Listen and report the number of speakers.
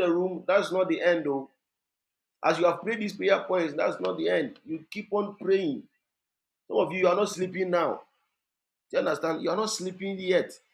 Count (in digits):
1